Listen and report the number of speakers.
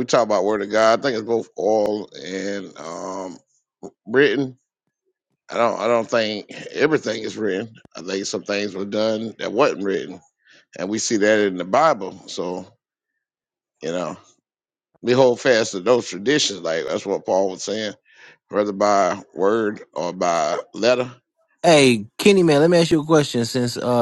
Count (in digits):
2